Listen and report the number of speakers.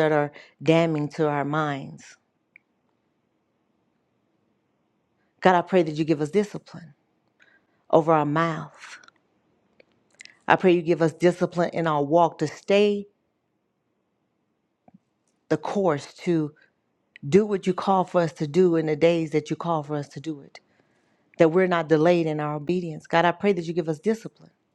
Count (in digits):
1